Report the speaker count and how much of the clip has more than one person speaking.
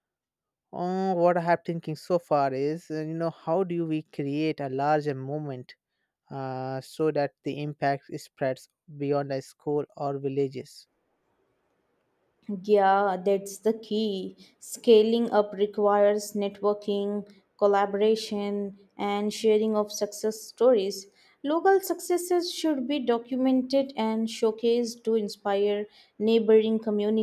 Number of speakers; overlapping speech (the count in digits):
2, no overlap